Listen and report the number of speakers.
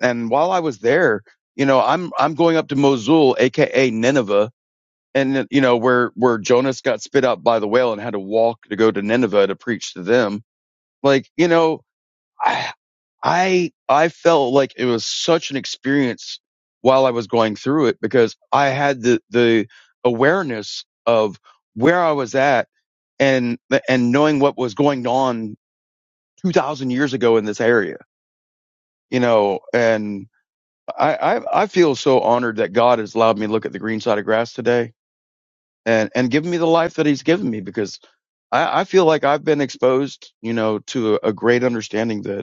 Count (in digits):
1